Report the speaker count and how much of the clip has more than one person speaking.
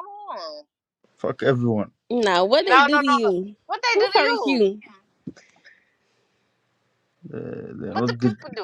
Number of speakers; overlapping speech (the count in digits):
3, about 21%